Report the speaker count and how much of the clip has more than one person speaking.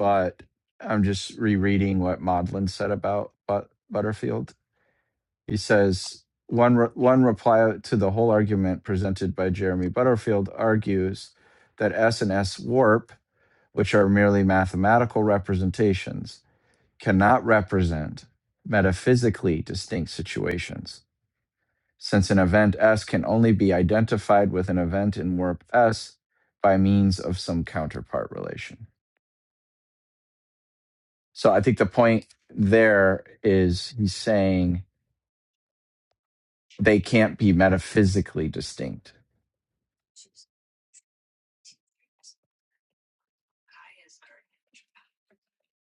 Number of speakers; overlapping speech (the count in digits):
1, no overlap